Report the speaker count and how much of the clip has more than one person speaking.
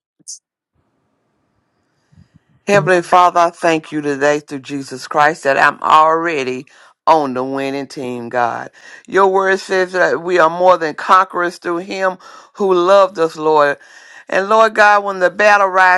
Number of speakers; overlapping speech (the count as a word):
one, no overlap